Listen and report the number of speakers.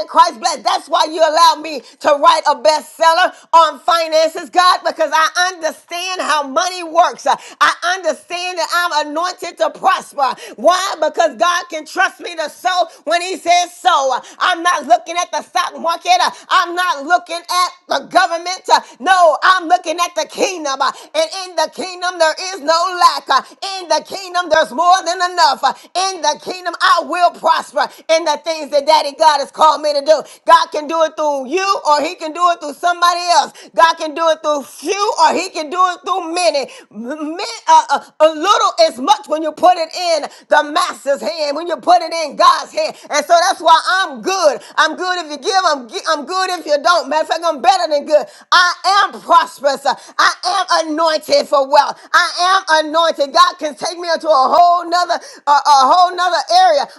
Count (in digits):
1